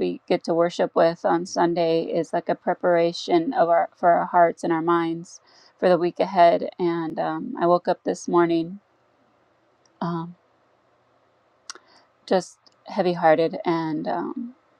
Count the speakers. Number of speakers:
1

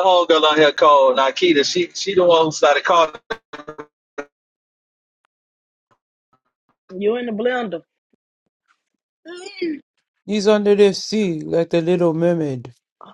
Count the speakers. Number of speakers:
3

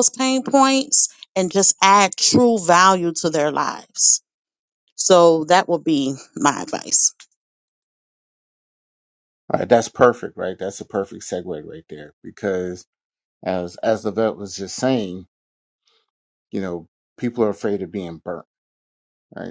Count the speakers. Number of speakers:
2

